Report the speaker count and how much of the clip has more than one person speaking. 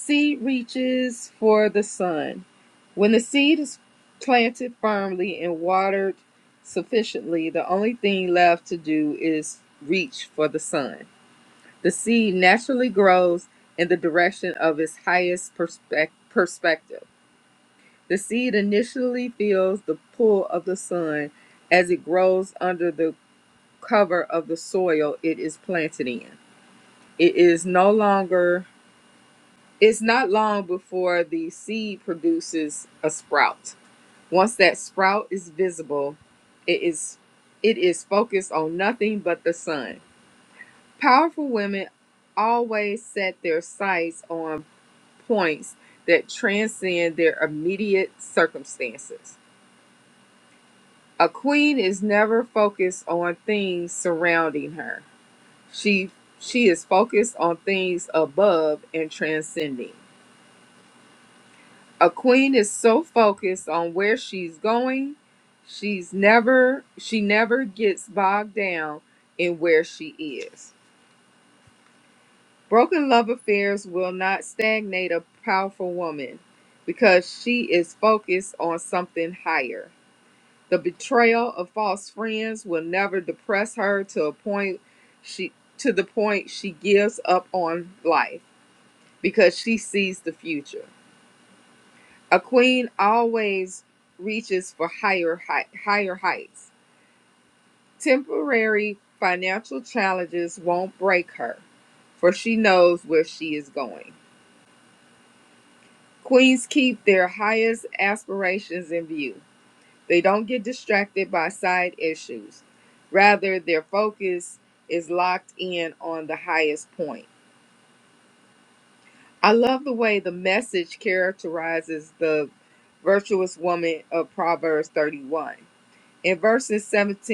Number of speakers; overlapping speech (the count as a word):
one, no overlap